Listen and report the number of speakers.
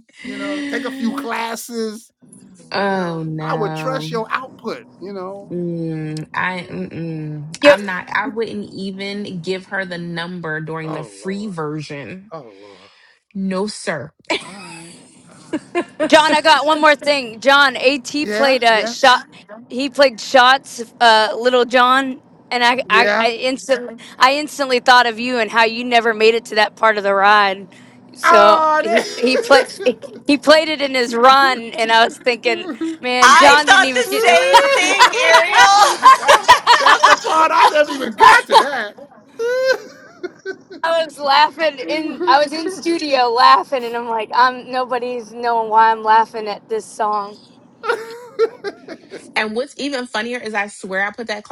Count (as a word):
four